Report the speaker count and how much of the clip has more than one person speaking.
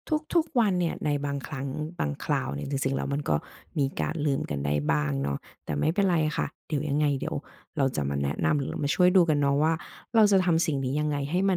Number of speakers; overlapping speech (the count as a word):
one, no overlap